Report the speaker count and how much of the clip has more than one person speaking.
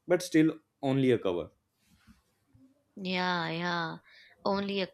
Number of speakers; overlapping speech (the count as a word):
two, no overlap